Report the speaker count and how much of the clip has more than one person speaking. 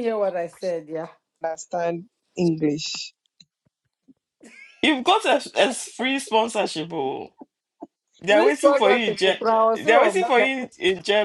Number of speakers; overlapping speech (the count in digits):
3, about 13%